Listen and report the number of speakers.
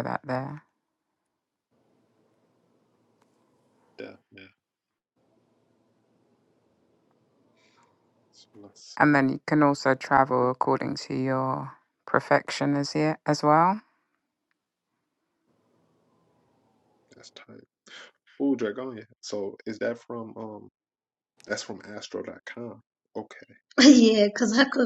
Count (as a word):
three